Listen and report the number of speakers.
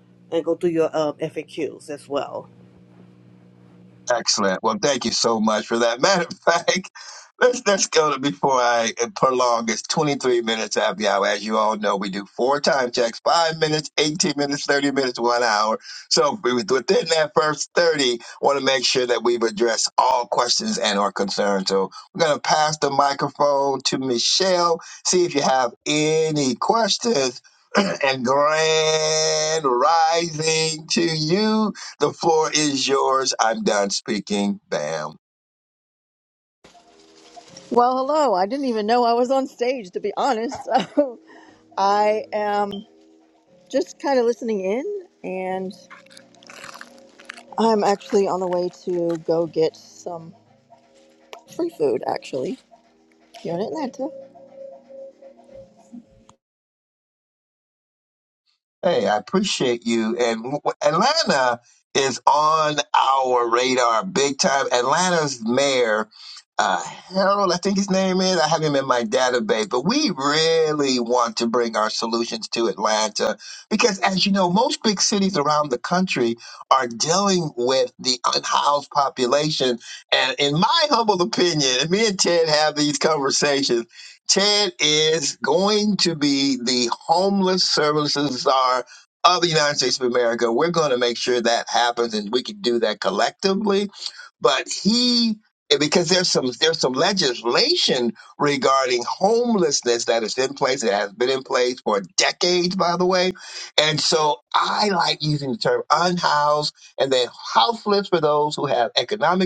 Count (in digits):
3